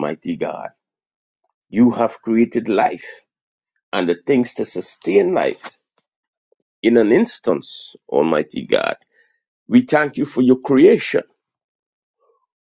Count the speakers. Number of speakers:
1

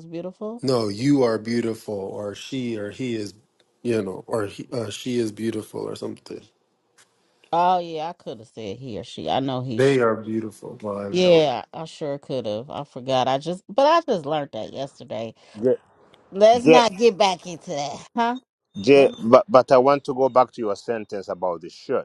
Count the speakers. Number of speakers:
3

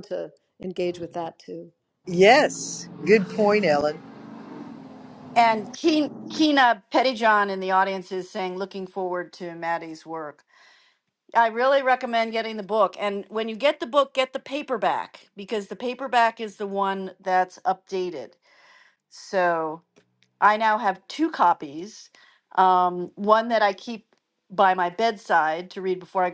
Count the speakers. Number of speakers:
3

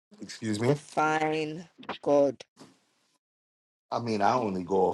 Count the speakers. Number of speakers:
2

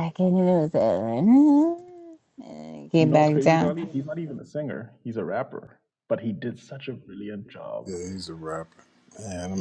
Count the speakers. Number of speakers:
3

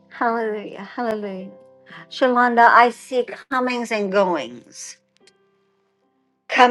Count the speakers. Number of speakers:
1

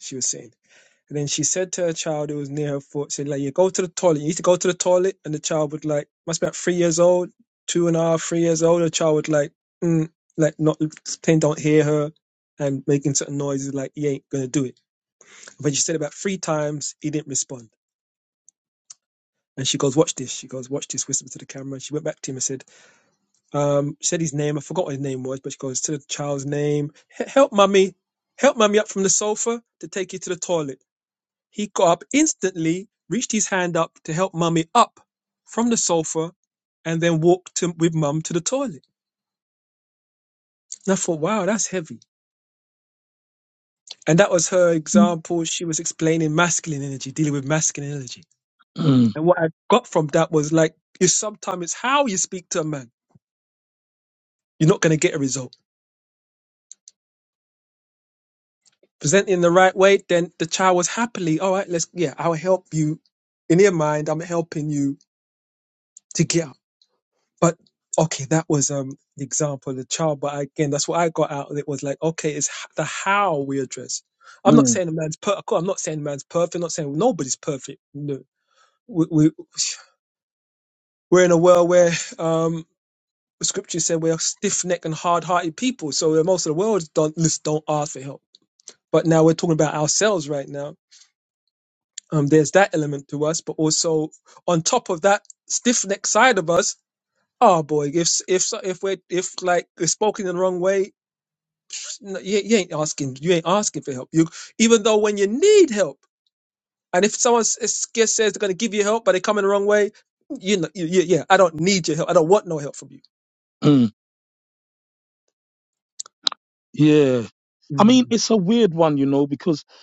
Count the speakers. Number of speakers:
2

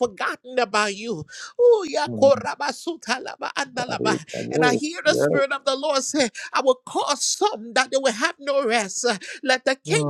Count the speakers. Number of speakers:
2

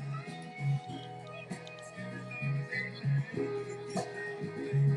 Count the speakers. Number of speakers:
0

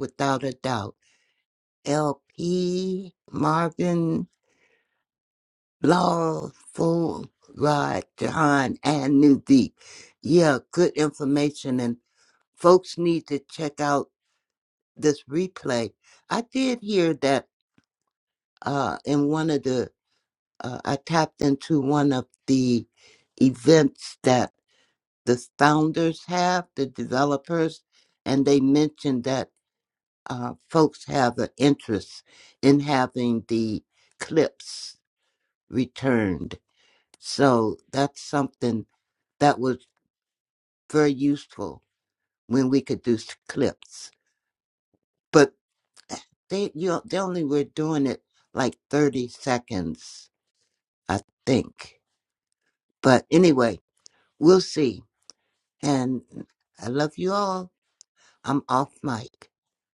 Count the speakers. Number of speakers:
1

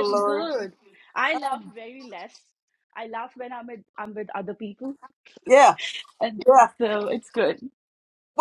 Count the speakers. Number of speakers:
2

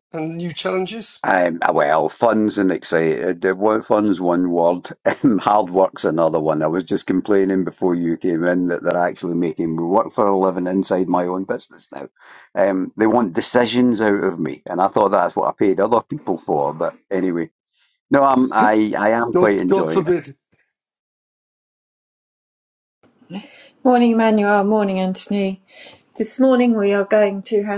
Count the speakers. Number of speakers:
3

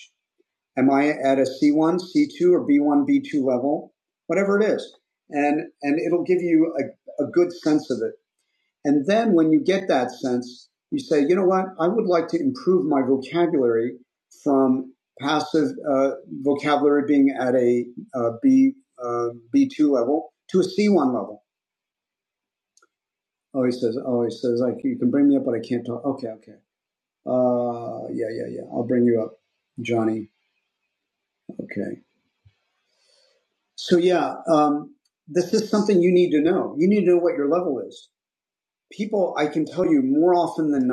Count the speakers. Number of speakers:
1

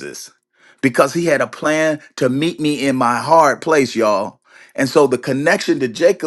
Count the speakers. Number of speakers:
1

